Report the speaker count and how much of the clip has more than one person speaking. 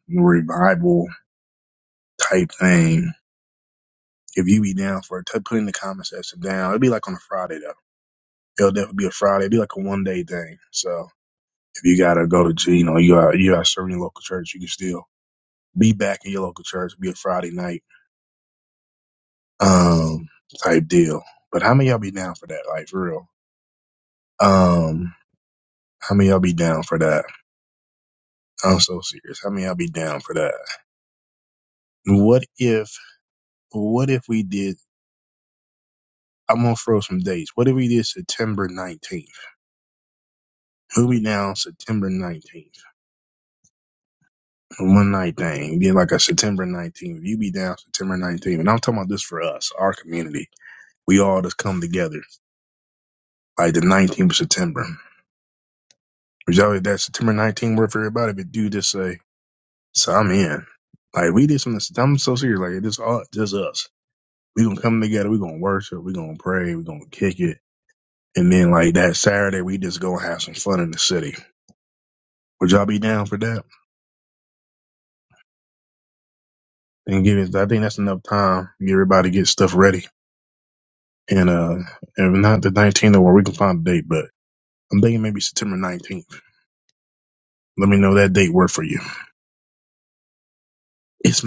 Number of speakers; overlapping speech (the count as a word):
one, no overlap